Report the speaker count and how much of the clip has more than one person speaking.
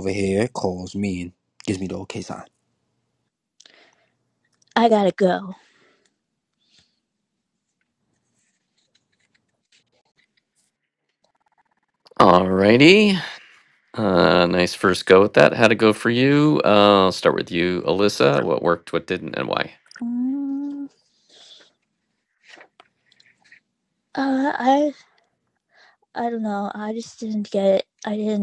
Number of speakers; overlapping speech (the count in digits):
3, no overlap